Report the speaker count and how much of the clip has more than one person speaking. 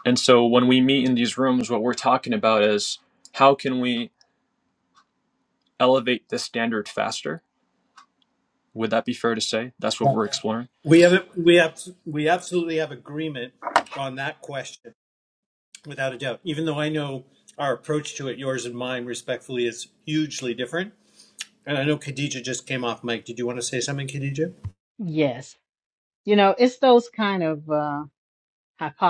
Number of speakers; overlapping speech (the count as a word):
three, no overlap